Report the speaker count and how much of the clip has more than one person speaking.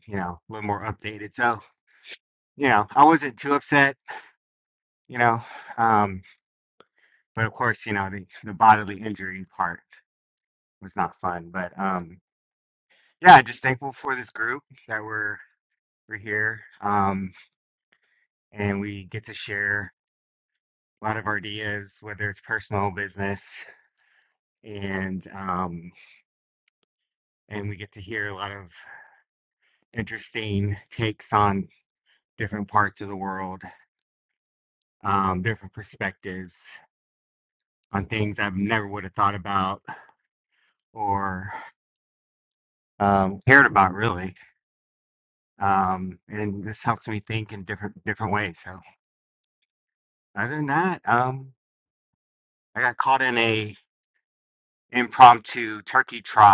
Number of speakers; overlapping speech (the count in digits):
1, no overlap